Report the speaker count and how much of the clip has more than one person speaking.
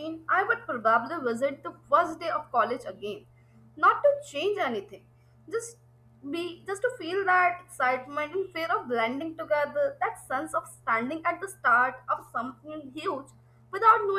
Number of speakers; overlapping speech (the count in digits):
1, no overlap